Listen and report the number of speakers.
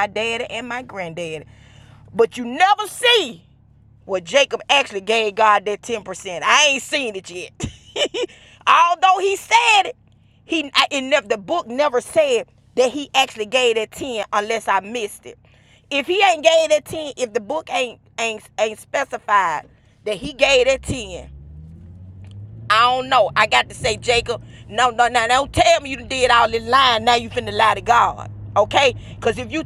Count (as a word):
one